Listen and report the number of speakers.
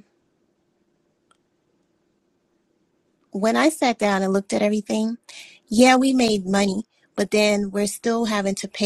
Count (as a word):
one